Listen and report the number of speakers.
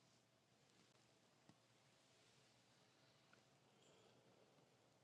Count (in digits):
0